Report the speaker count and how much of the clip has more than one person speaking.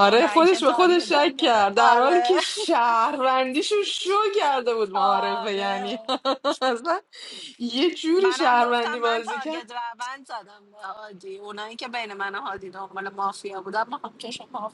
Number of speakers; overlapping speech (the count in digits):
2, about 33%